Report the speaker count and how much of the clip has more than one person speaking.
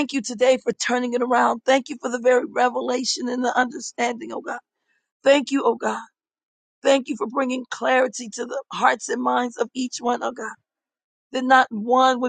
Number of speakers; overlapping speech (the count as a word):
one, no overlap